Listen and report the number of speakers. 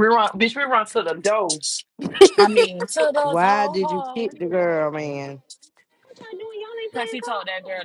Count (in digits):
4